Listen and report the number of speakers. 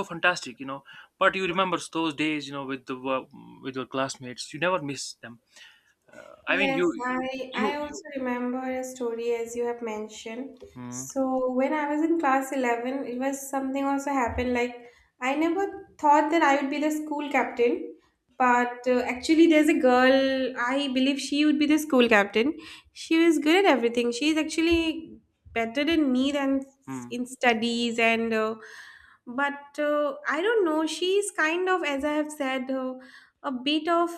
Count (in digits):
2